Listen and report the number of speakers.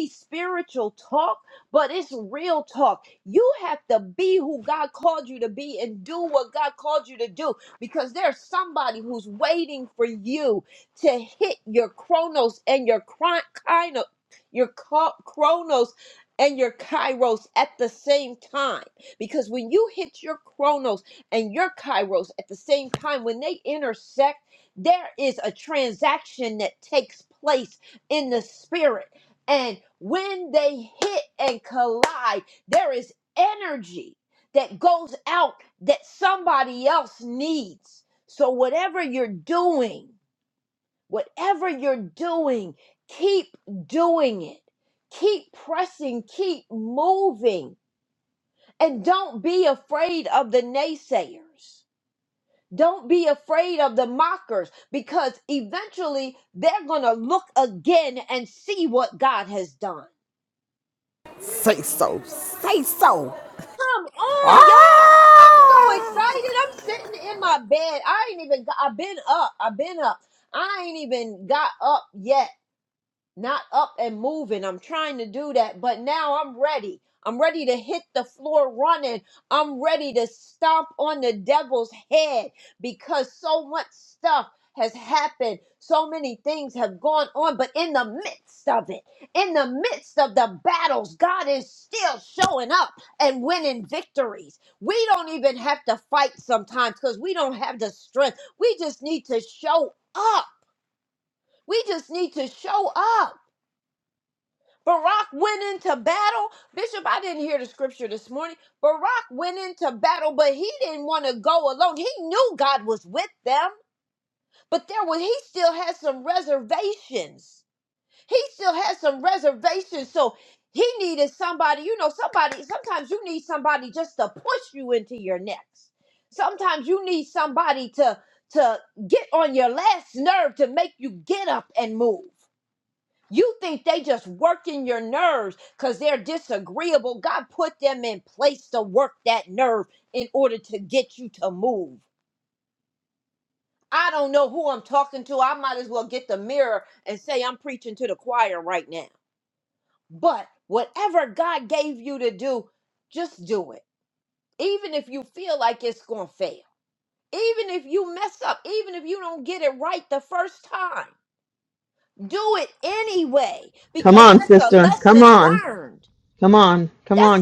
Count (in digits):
3